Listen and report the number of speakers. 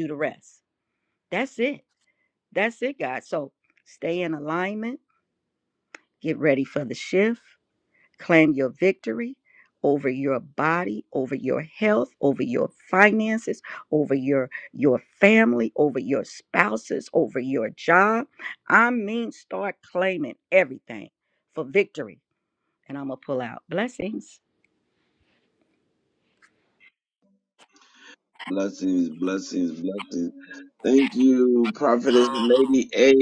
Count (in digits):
2